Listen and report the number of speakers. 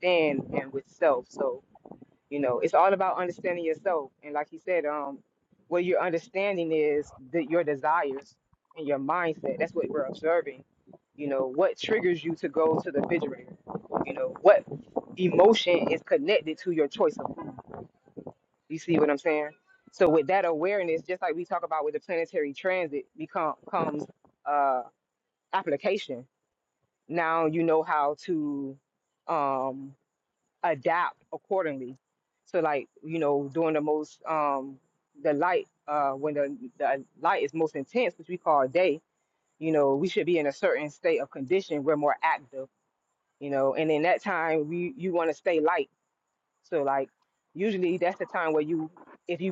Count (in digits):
1